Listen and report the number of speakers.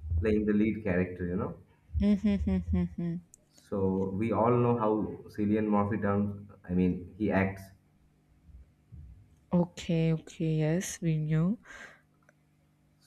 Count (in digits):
2